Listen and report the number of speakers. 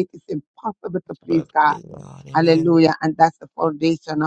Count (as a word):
two